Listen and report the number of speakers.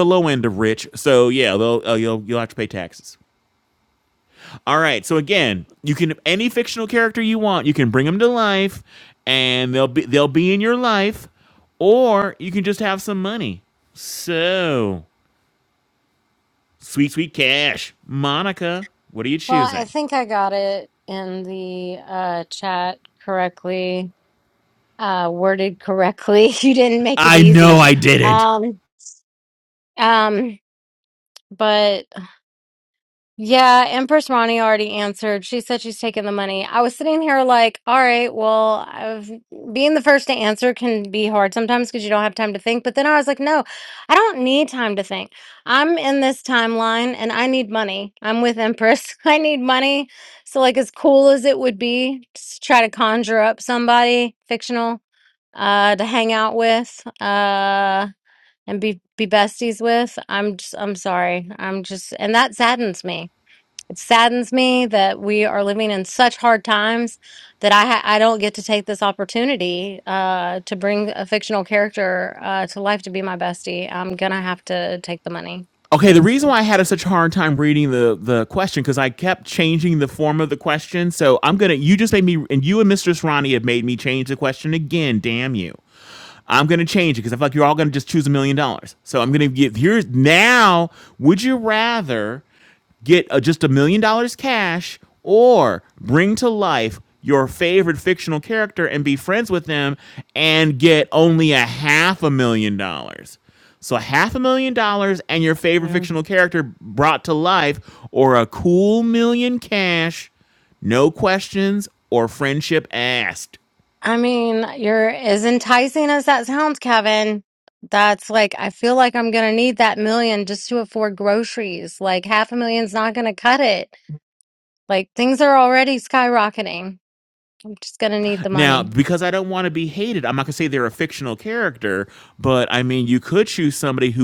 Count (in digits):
2